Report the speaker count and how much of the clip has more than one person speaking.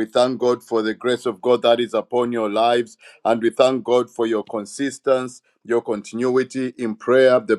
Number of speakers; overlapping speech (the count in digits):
1, no overlap